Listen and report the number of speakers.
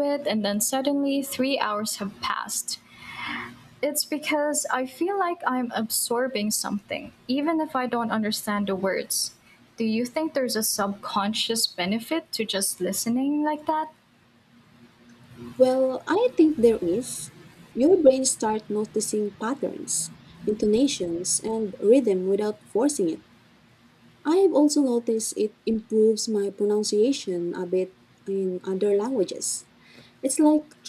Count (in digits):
2